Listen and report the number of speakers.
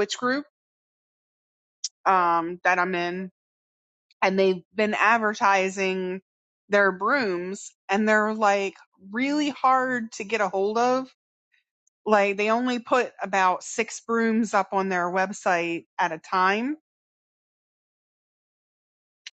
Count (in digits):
1